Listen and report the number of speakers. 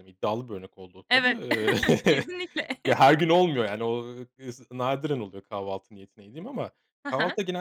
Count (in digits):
2